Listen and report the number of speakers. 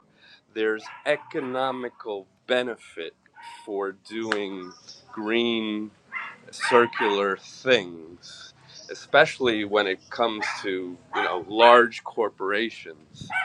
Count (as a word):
one